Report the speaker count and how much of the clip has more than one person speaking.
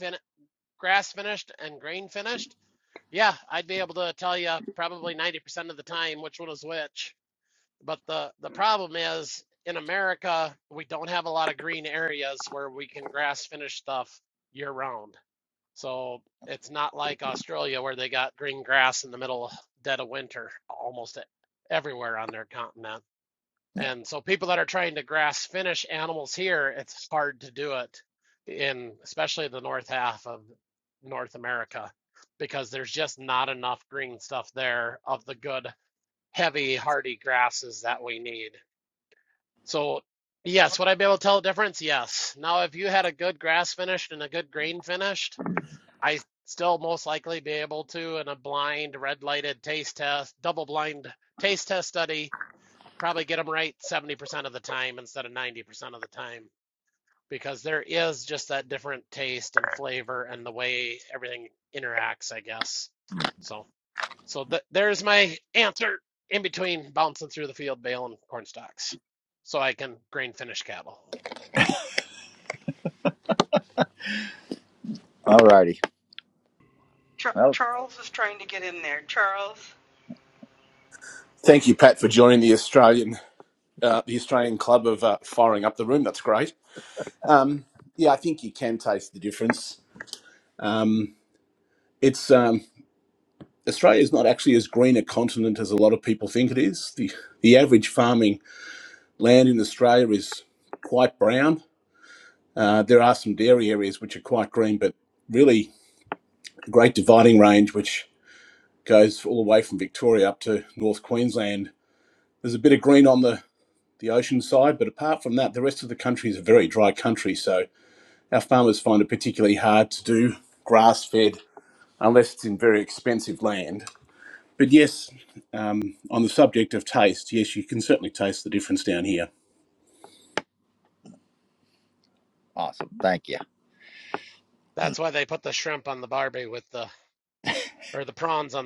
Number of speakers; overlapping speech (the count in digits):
4, under 1%